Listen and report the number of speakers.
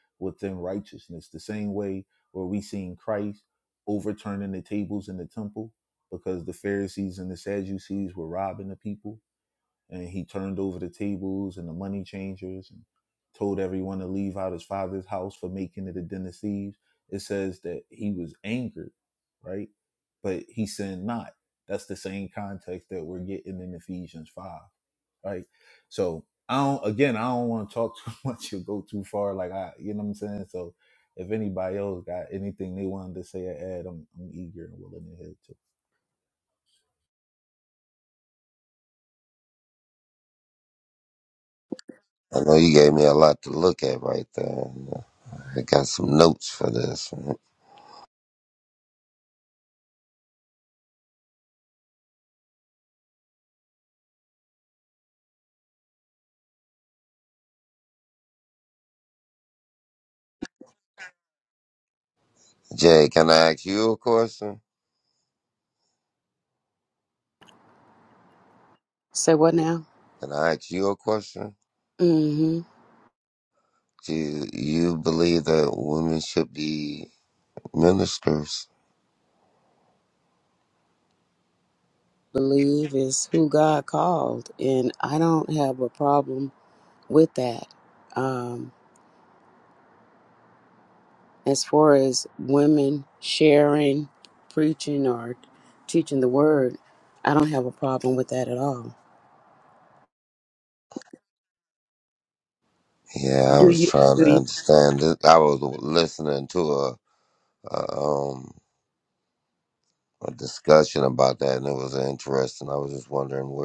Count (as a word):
three